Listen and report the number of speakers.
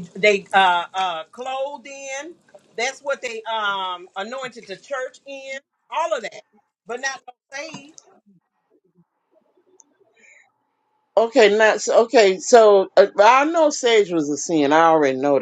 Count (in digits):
2